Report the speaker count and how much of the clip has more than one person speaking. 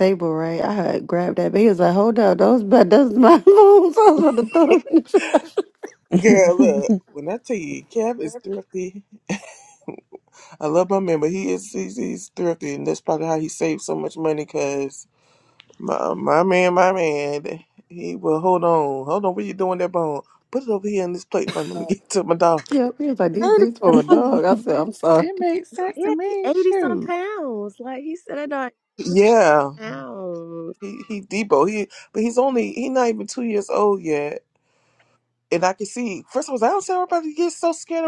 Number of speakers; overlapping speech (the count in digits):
4, about 7%